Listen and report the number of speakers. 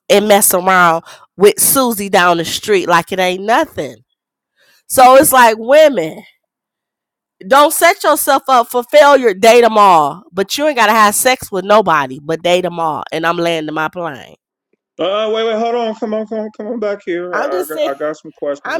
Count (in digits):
2